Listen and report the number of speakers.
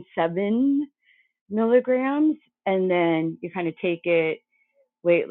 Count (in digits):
1